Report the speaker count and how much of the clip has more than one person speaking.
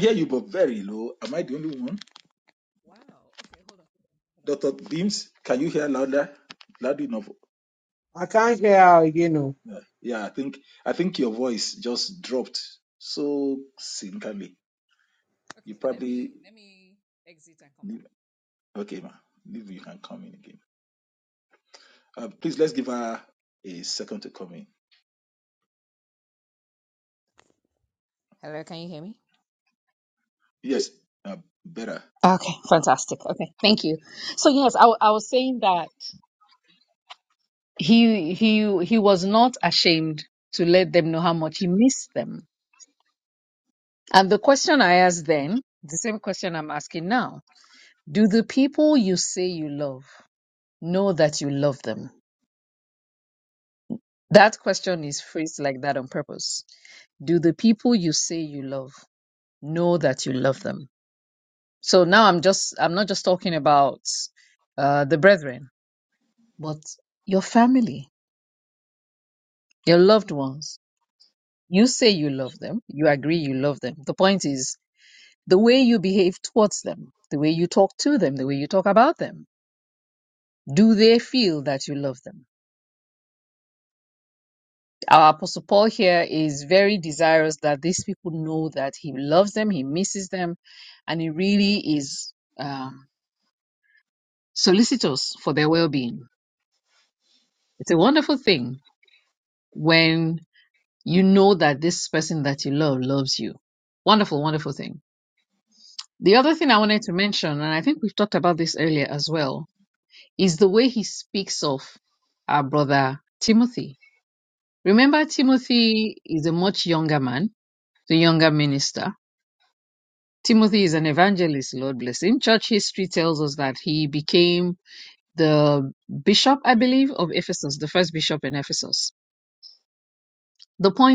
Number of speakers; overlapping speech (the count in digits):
3, under 1%